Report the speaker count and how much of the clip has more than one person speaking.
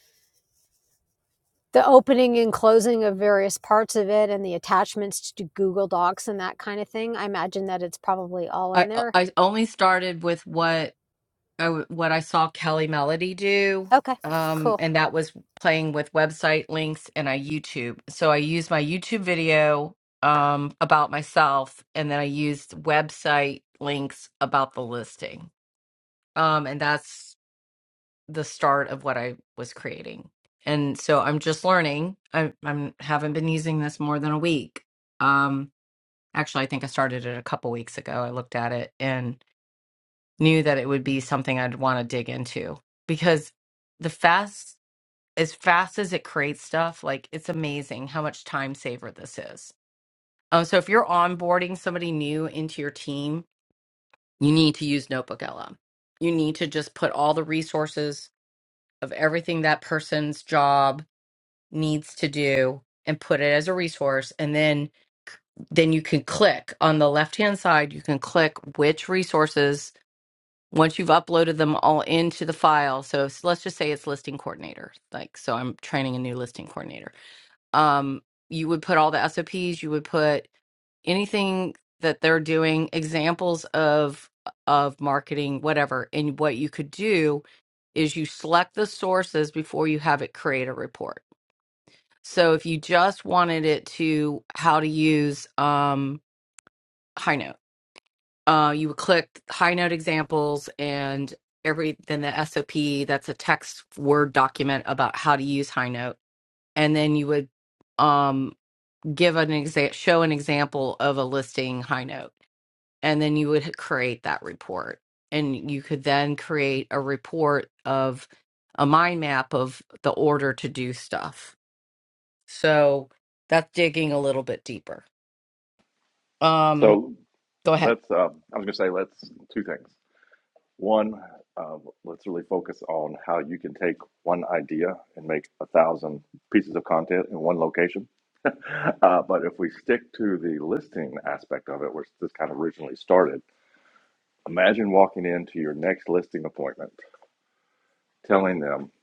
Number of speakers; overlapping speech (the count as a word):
three, about 1%